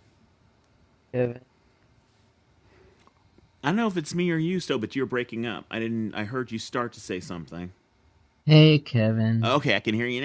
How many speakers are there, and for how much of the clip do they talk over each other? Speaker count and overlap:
two, about 1%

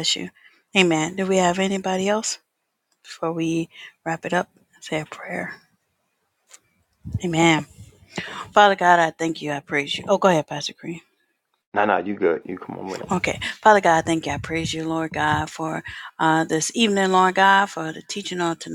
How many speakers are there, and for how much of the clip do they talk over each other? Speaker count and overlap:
two, about 1%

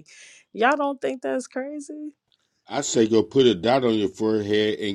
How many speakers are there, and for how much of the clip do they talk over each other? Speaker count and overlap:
two, no overlap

